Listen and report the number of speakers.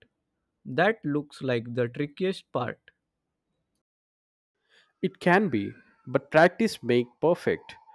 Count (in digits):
2